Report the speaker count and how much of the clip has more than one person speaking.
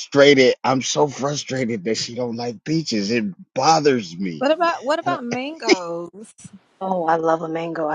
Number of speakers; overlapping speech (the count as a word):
three, no overlap